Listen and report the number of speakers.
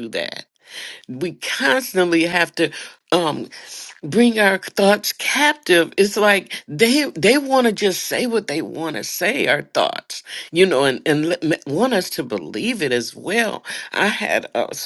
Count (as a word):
one